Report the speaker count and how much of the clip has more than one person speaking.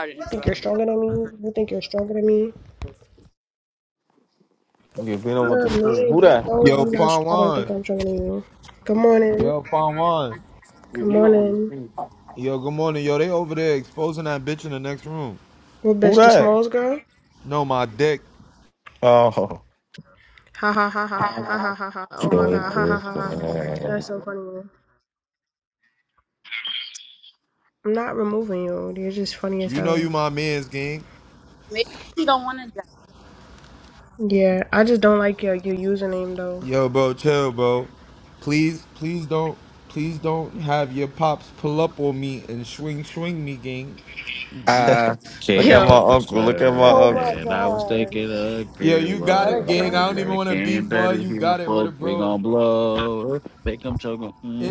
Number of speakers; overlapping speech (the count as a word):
five, about 24%